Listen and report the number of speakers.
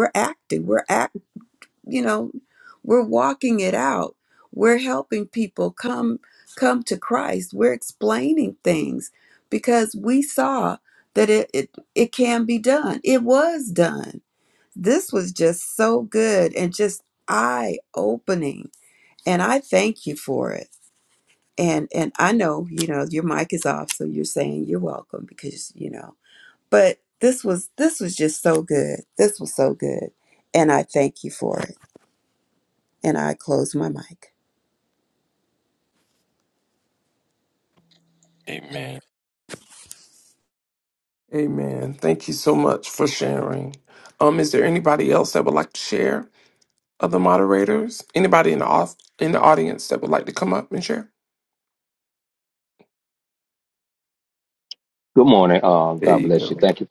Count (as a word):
three